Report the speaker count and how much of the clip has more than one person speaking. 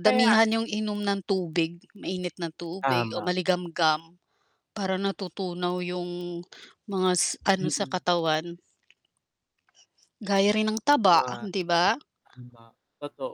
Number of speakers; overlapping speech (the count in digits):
2, about 11%